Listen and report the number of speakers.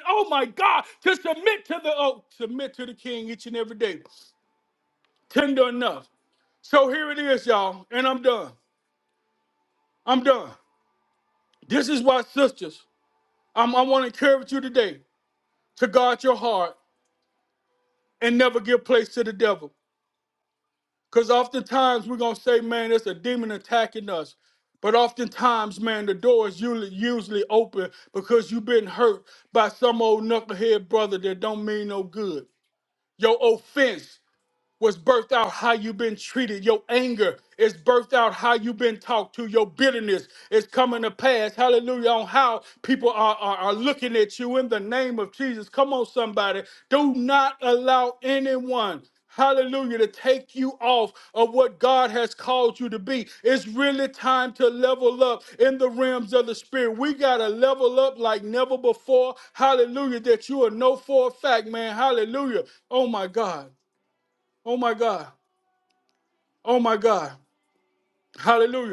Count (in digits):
1